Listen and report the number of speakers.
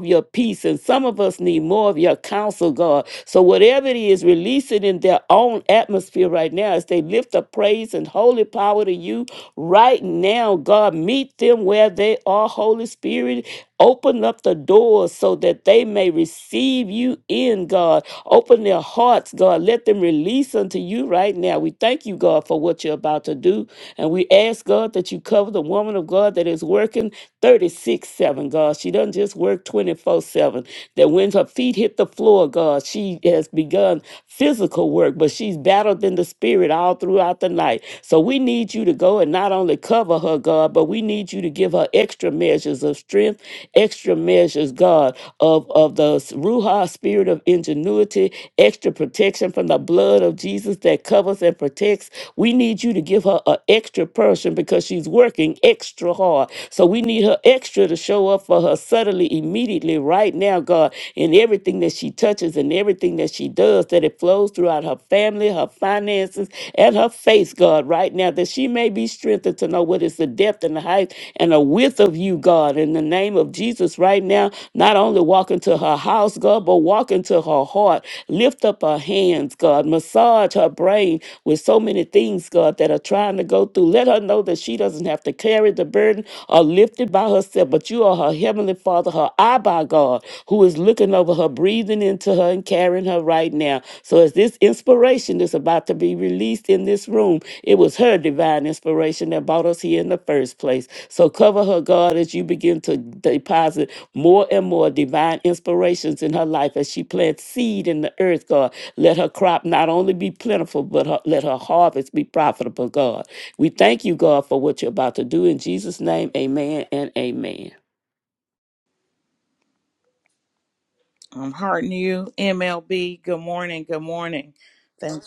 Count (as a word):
two